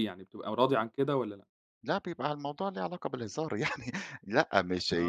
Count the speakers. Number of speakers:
two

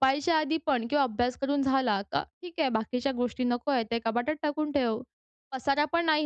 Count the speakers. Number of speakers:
one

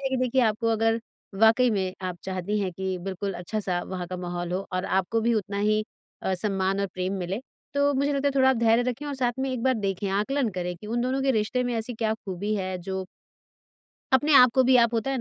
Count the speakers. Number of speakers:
one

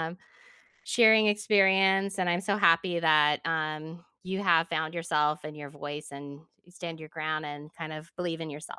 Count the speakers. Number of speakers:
one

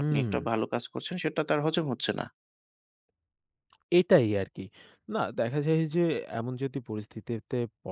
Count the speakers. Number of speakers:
two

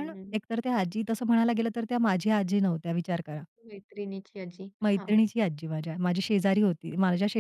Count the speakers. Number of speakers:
two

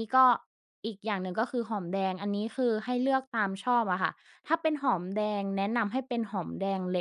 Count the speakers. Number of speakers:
one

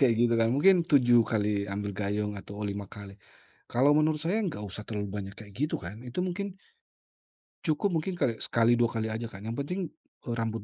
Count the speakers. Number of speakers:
one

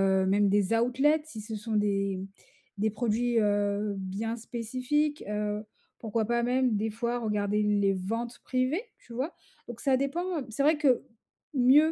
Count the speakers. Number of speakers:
one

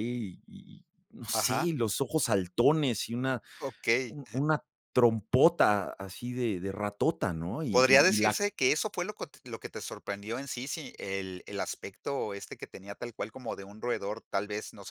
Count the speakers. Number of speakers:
two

